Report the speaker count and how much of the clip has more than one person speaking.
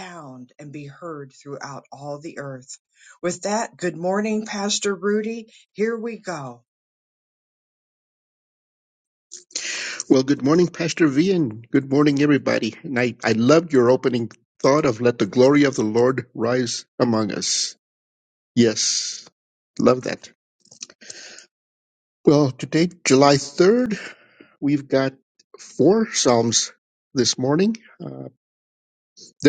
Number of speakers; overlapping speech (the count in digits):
2, no overlap